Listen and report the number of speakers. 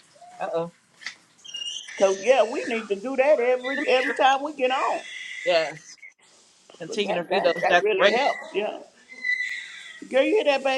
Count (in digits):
2